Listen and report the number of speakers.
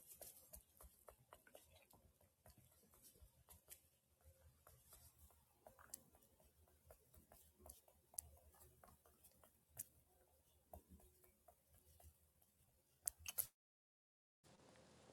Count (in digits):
0